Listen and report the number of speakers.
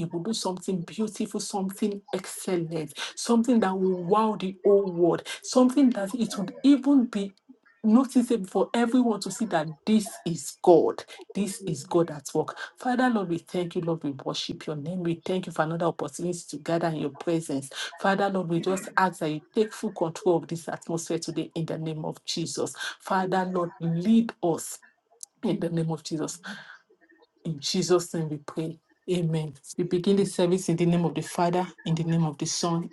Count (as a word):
one